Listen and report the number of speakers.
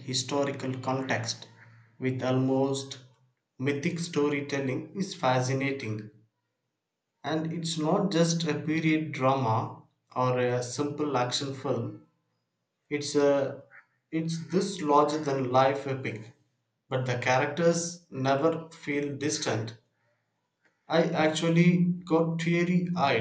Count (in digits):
1